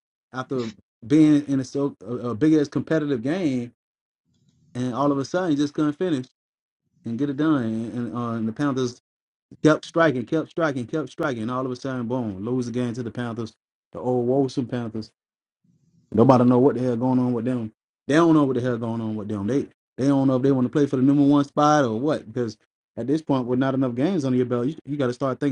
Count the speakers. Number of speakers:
one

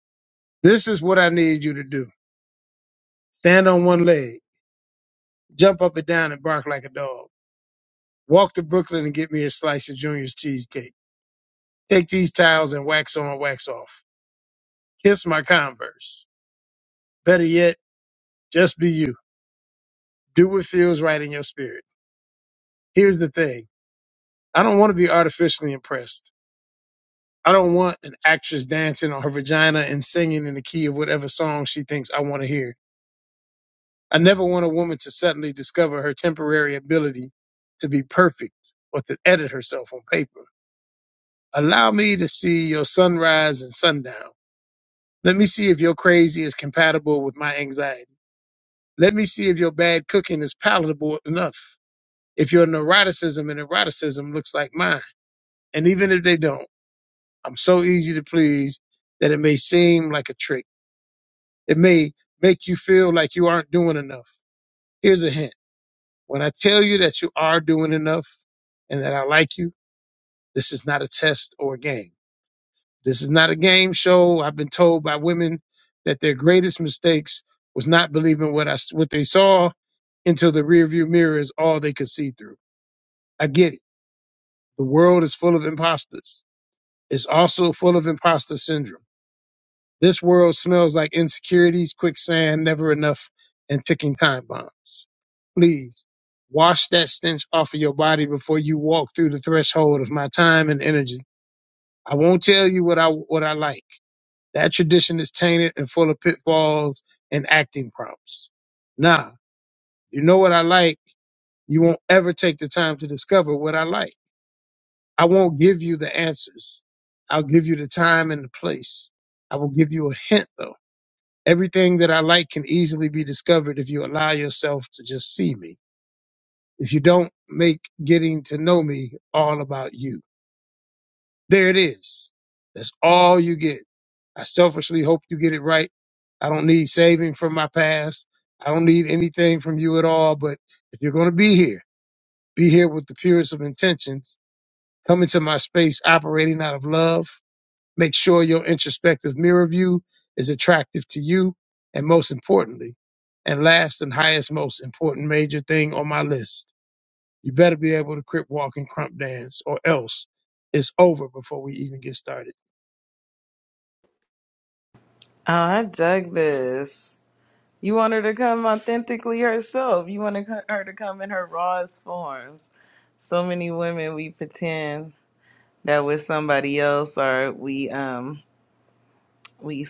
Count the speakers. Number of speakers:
two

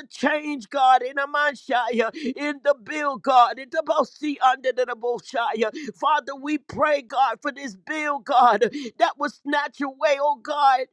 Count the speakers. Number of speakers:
one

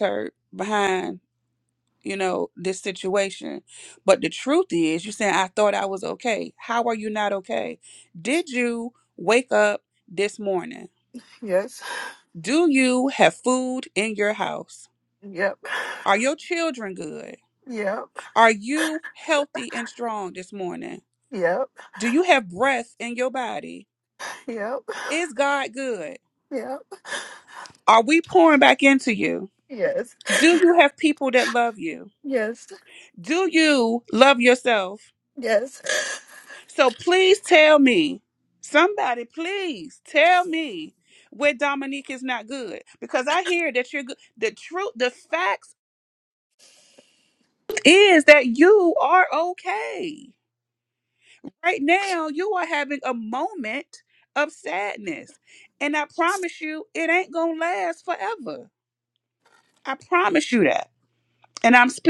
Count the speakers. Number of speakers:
two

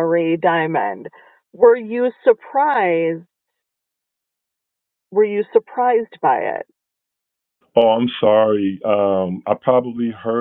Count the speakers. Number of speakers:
two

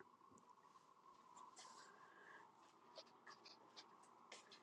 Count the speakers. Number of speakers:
zero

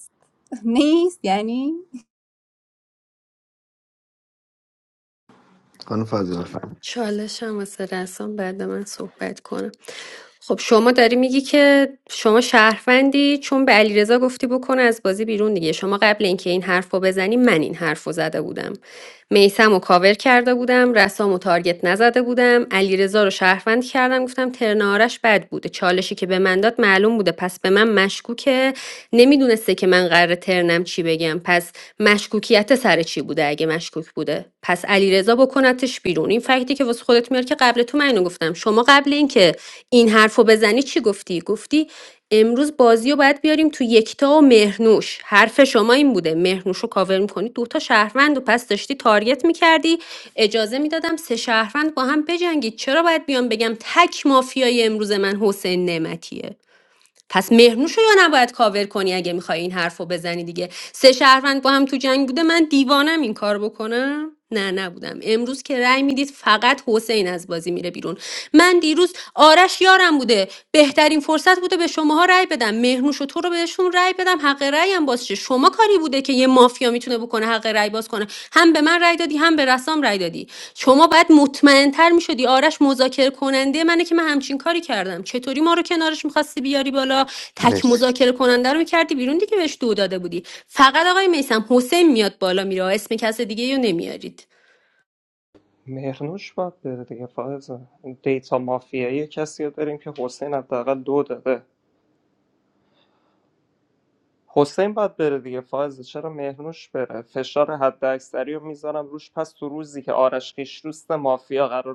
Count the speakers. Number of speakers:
four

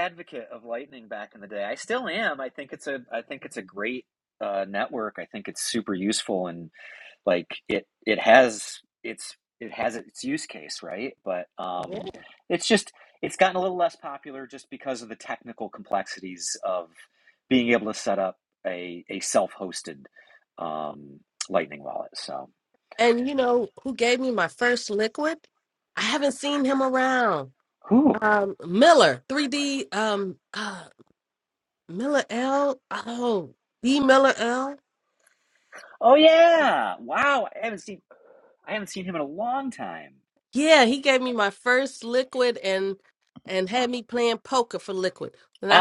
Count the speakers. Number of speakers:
two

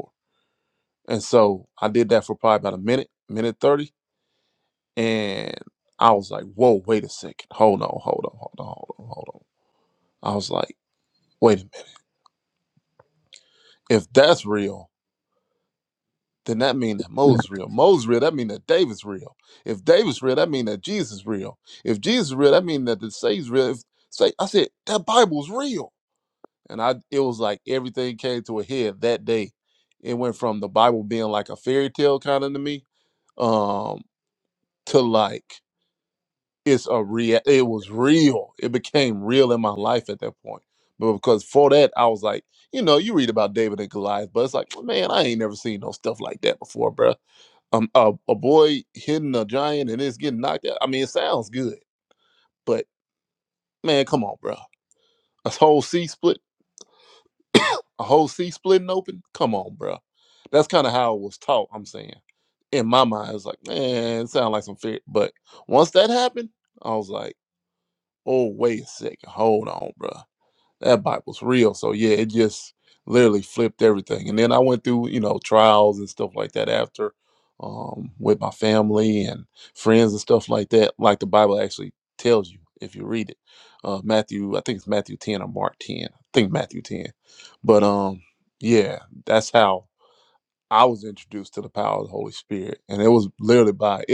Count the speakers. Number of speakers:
one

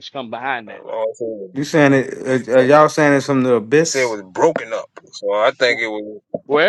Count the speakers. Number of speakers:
three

